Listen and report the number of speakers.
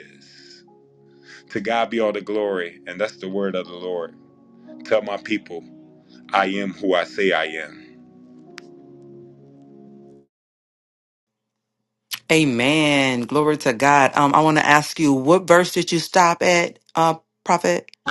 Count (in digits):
2